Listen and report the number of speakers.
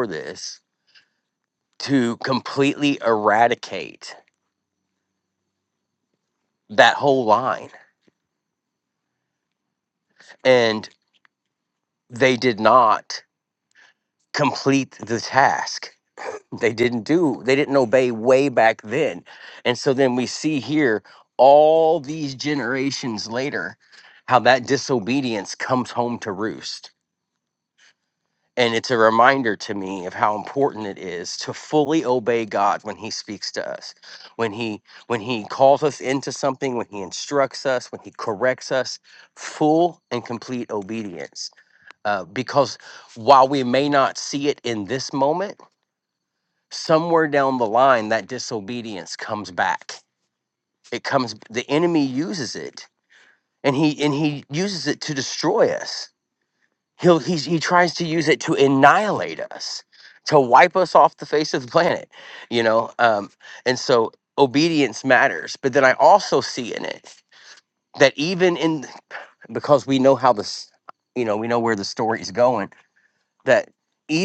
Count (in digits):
1